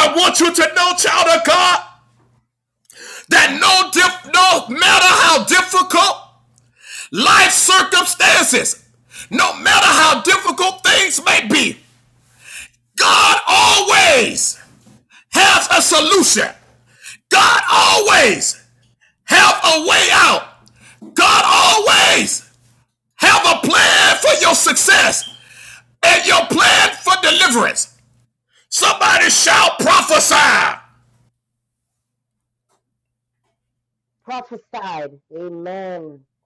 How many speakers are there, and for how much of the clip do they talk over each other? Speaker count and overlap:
two, no overlap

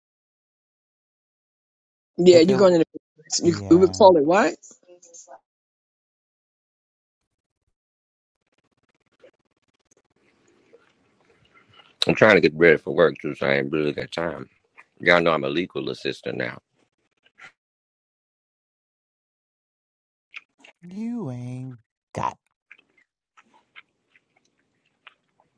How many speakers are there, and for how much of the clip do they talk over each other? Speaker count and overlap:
three, about 4%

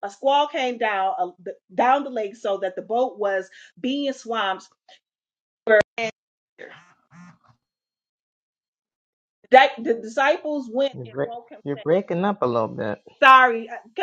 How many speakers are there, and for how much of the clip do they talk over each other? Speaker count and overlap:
two, about 4%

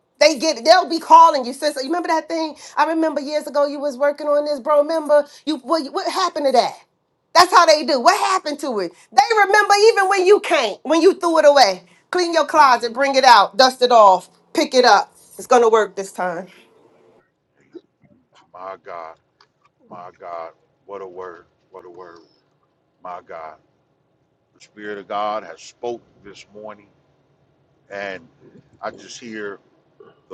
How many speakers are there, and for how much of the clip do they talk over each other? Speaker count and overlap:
two, under 1%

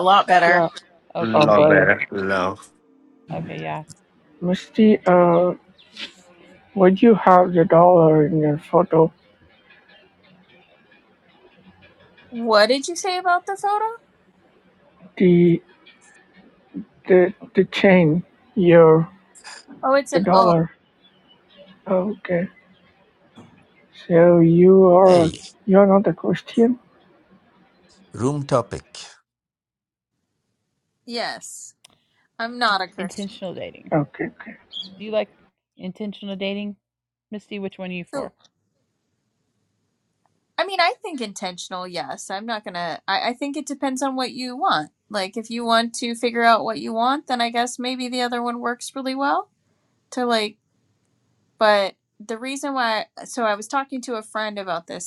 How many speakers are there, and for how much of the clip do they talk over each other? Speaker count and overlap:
five, about 4%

